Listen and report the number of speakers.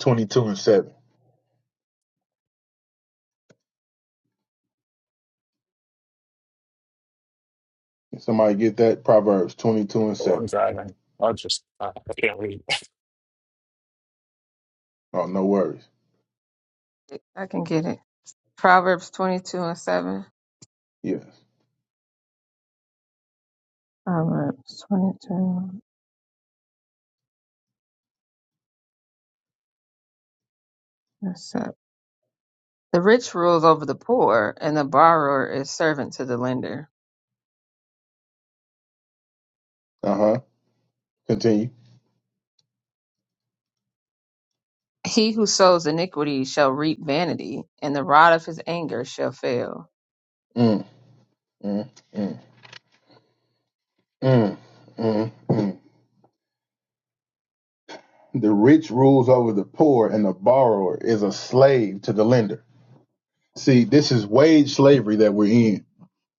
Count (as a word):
three